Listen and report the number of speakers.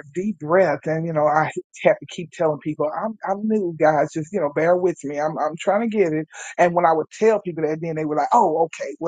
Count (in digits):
1